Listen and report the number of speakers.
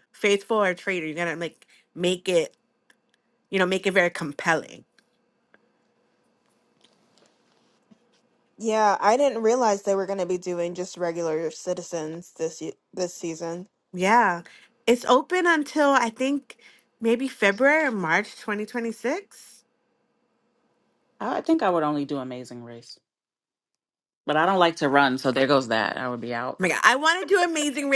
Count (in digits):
3